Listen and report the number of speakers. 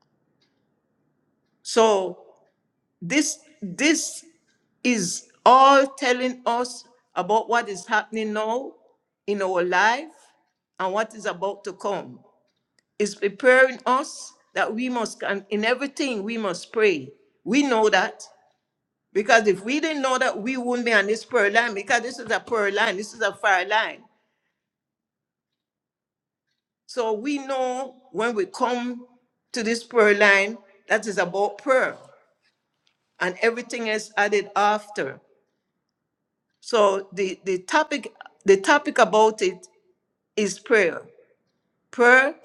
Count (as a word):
one